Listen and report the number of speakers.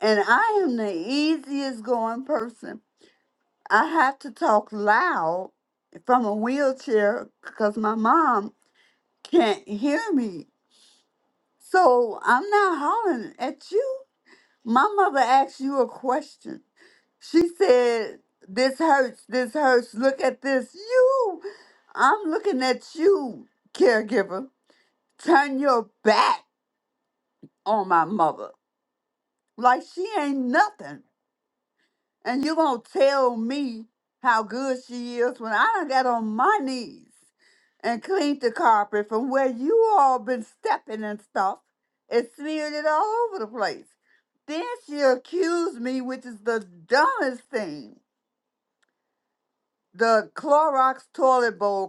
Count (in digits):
1